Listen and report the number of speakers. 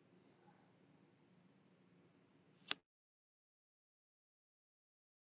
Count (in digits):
0